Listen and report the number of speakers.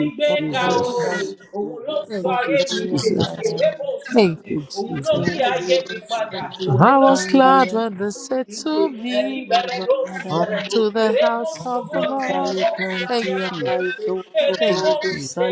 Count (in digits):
3